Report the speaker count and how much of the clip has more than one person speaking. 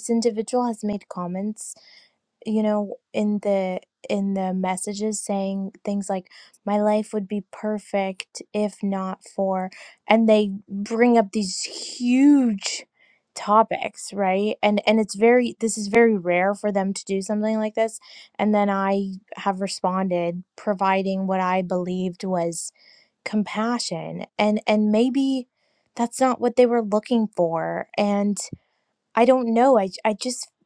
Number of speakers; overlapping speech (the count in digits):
1, no overlap